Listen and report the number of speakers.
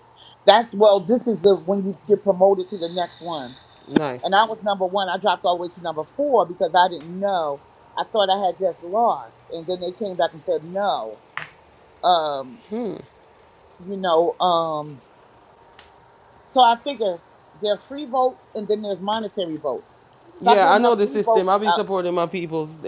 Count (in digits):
2